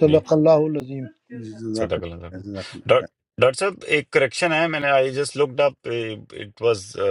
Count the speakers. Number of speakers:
3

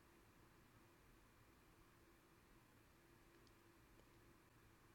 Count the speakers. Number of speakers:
0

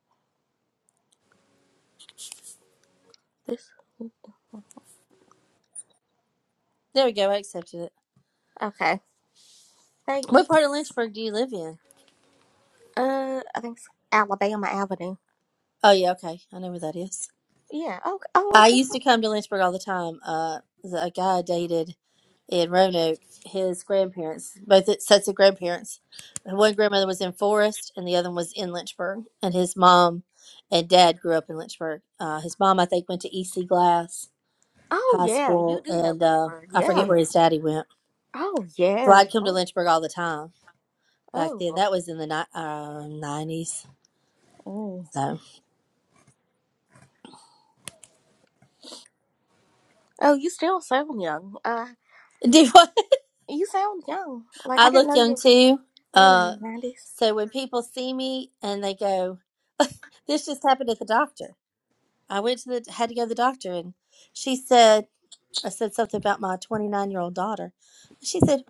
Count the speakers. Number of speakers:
2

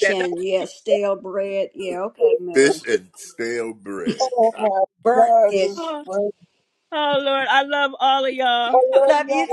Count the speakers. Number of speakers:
4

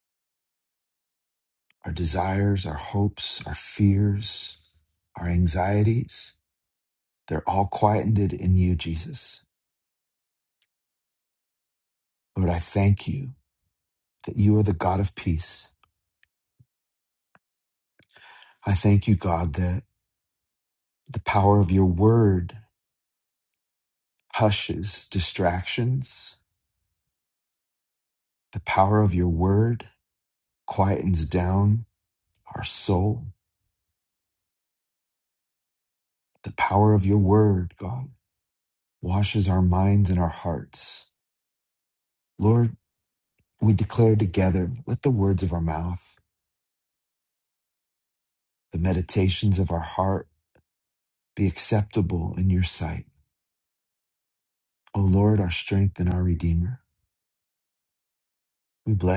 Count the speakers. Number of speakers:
1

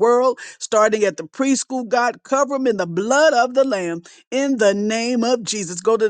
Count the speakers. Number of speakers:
1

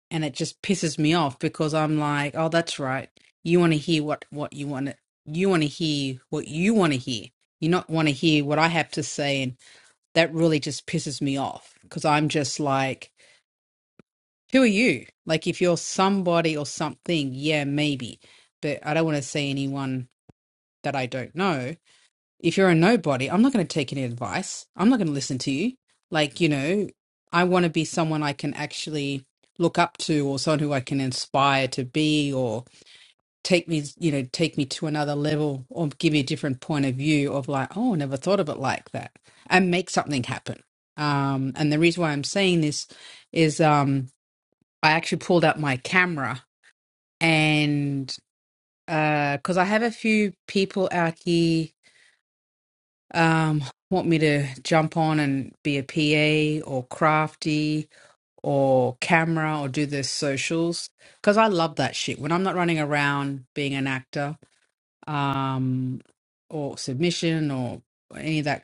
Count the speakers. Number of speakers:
1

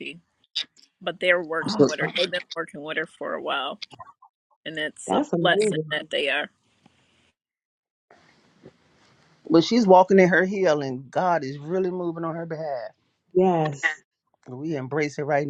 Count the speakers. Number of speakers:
3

